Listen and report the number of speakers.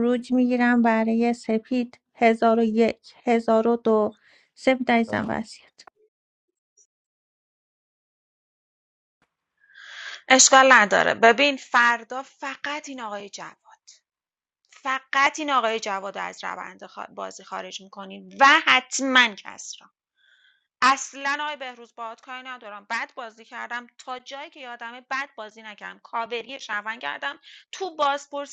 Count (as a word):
two